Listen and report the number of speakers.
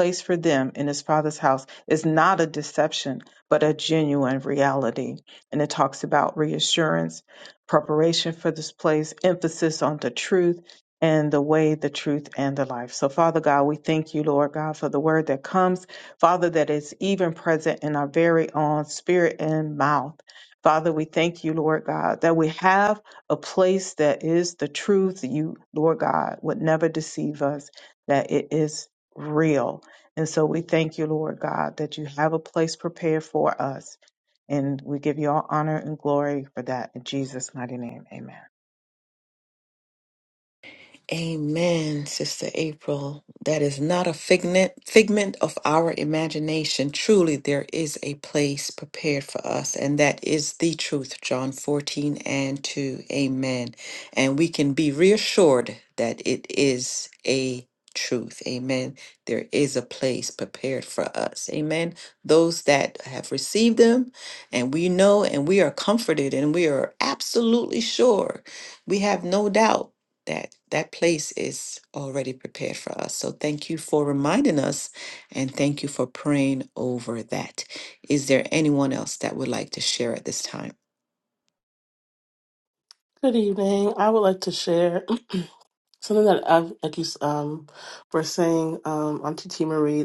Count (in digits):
3